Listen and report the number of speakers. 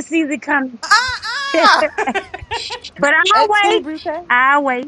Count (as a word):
two